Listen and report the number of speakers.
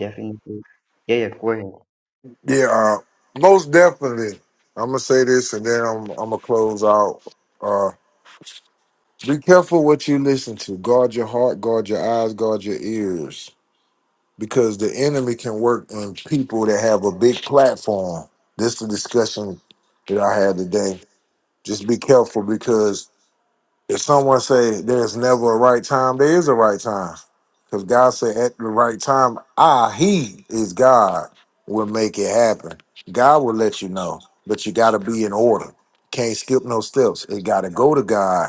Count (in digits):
2